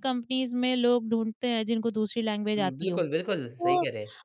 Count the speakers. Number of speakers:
two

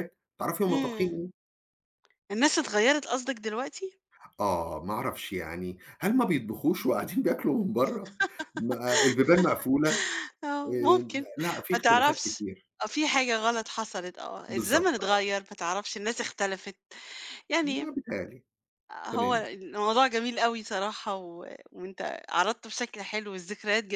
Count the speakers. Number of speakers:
two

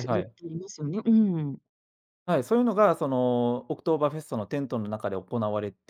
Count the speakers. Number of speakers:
two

